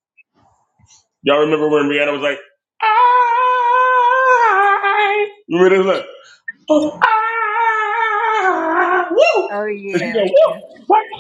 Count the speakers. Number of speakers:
2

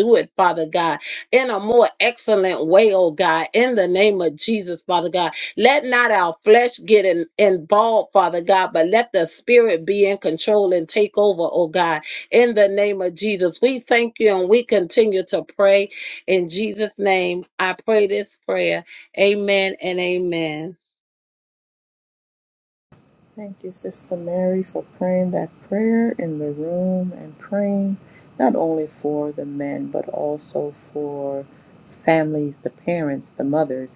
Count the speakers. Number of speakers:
2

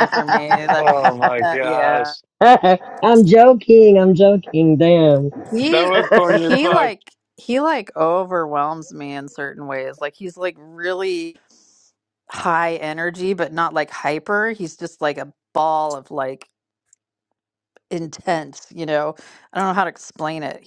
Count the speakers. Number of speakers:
3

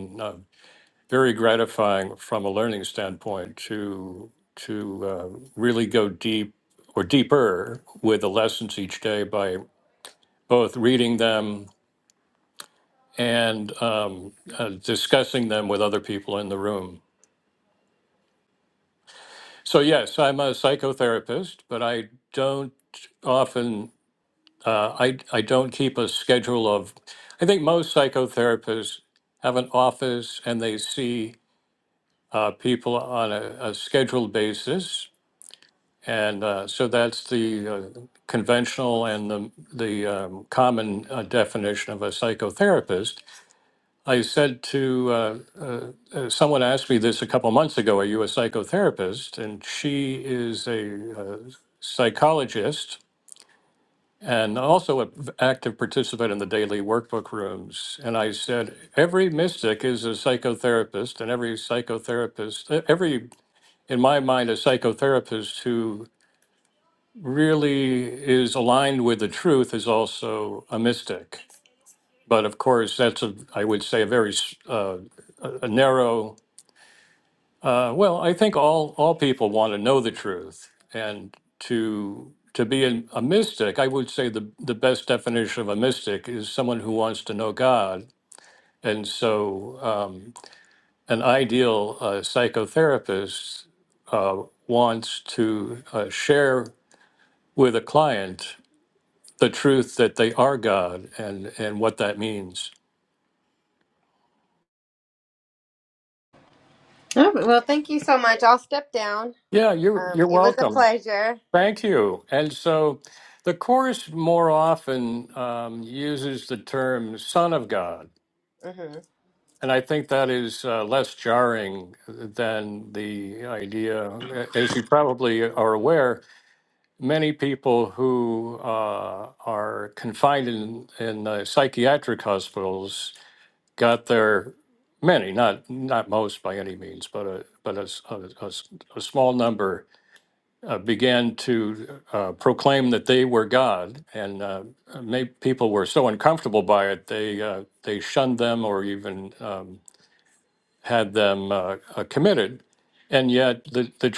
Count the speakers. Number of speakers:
2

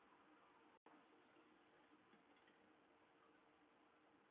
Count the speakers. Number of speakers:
0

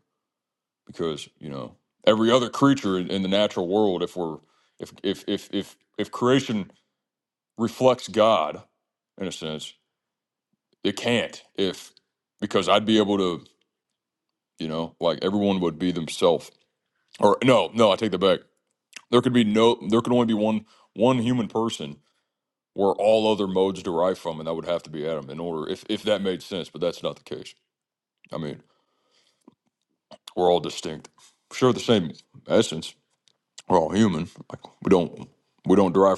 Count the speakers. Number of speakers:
1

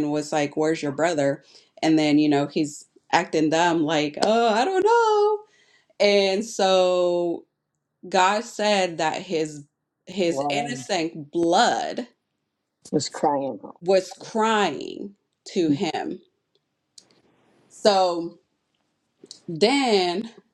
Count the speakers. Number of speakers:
2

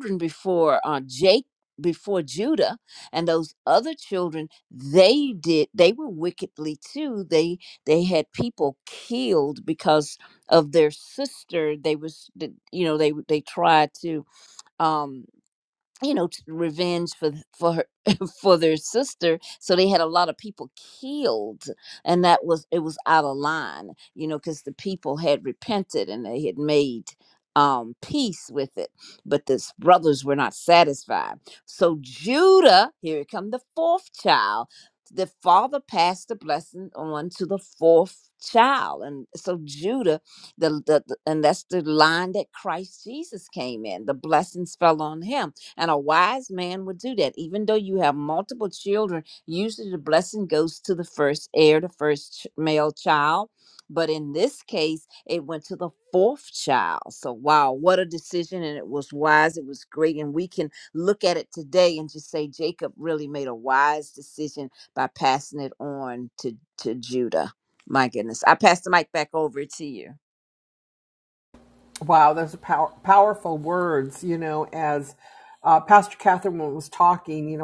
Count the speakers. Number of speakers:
2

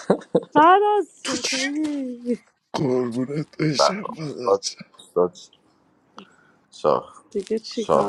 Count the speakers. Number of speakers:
3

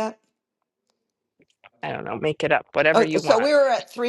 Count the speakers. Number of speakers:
2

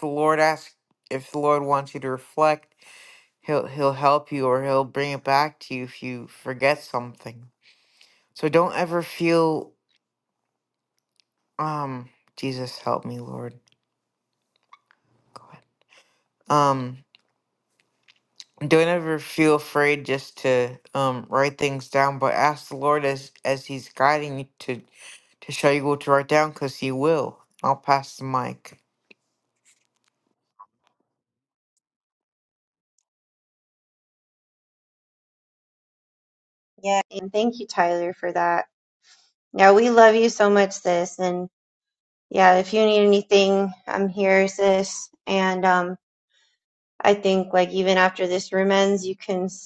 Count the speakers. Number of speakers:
2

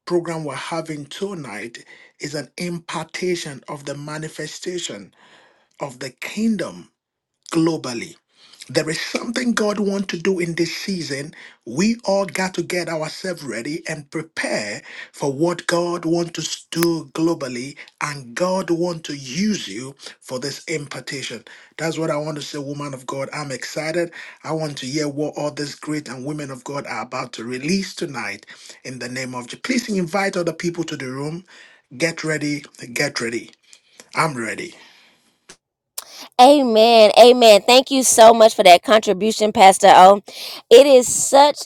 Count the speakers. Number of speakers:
2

